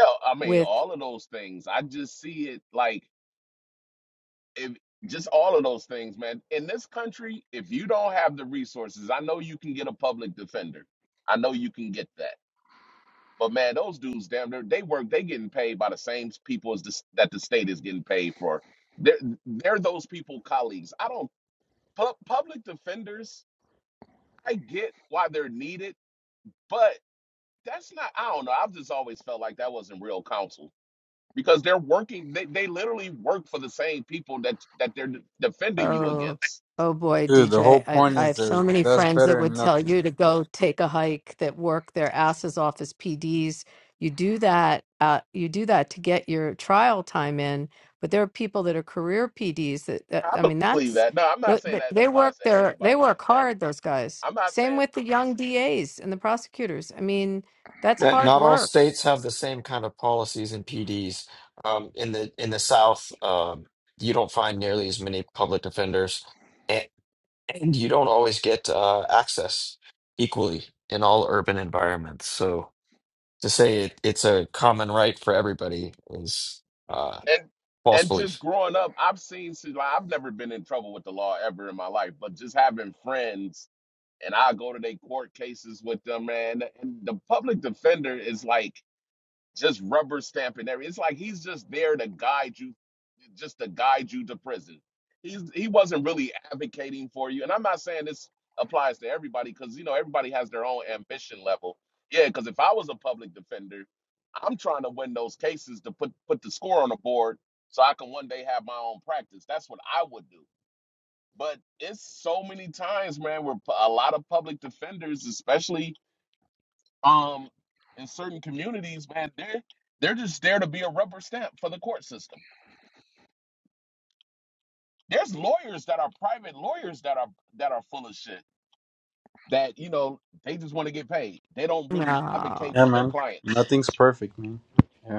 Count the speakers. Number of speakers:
4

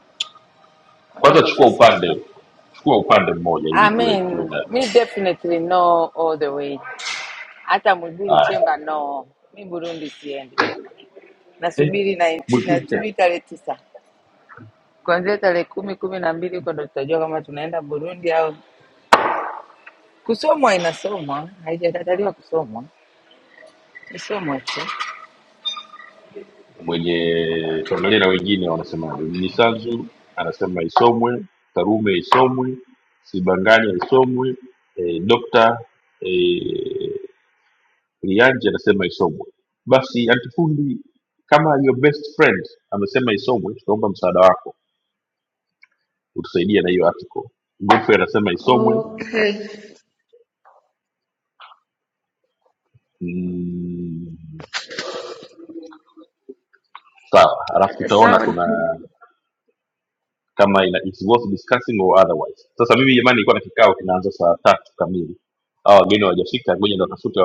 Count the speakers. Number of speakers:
3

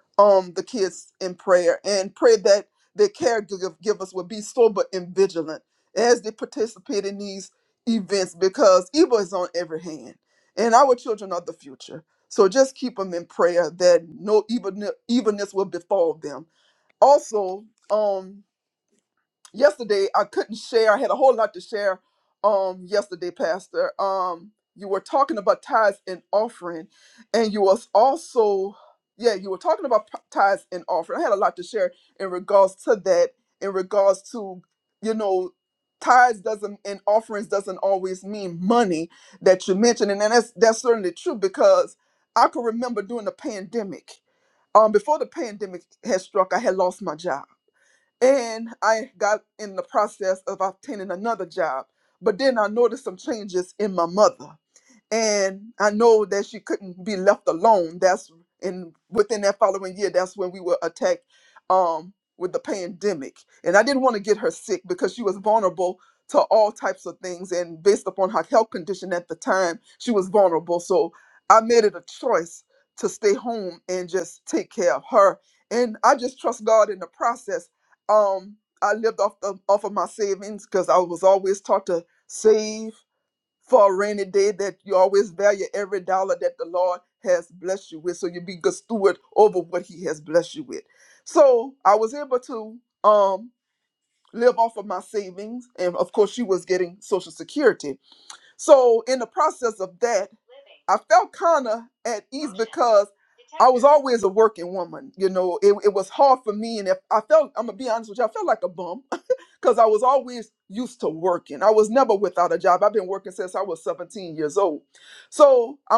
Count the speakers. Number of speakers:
1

